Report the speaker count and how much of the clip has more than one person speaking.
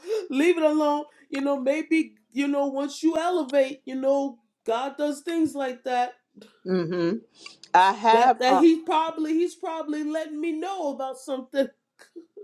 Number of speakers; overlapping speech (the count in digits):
2, about 4%